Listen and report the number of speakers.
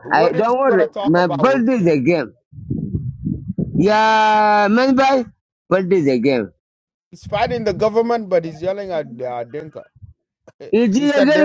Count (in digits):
2